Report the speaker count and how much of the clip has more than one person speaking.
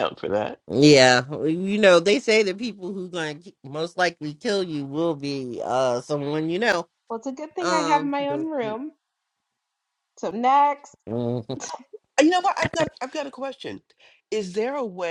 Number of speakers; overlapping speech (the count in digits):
3, about 6%